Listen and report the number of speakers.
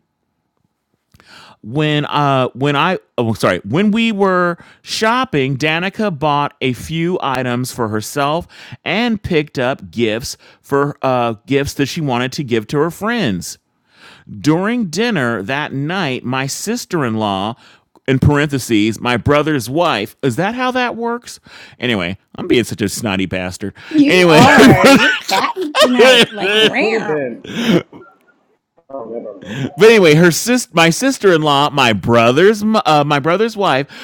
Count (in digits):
3